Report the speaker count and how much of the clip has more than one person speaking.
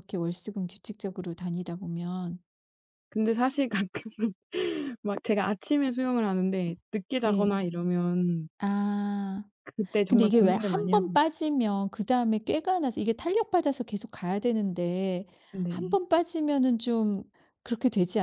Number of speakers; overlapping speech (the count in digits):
2, about 9%